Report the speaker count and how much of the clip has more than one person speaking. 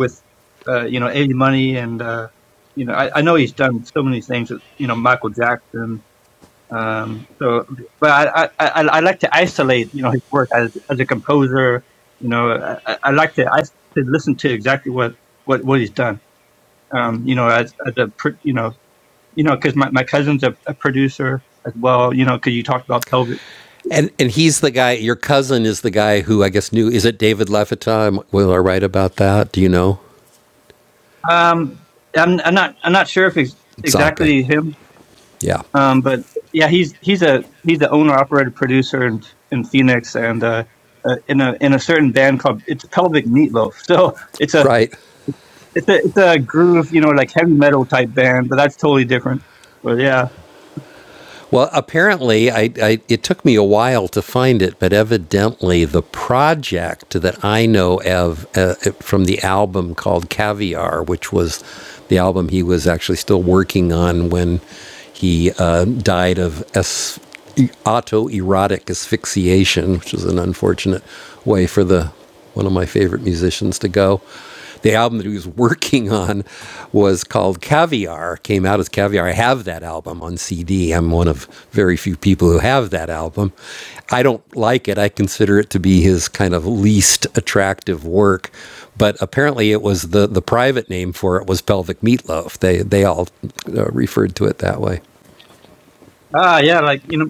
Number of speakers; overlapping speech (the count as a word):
two, about 1%